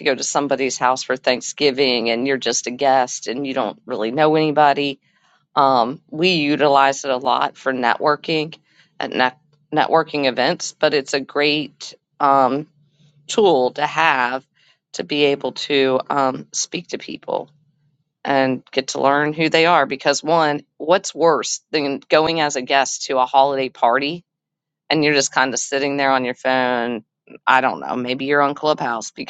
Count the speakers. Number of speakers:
1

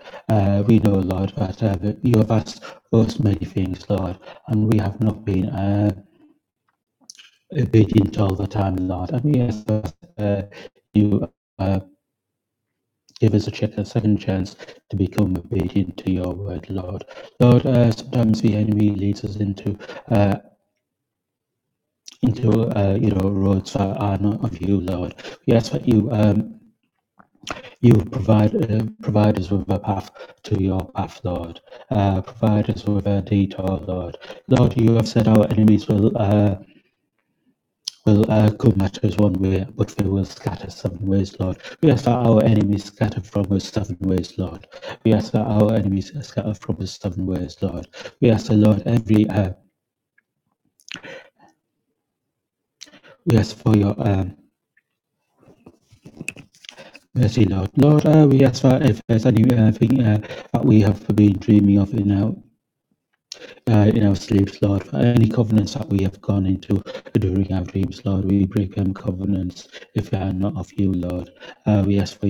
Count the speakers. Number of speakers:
1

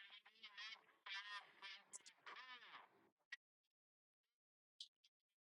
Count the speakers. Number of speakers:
0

